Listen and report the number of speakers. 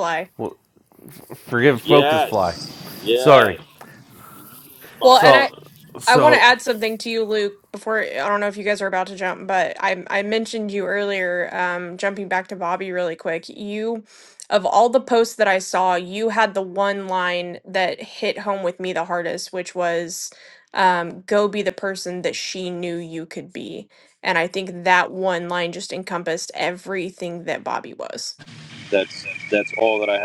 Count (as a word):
three